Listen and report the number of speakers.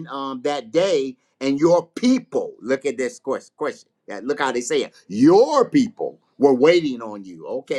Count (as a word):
one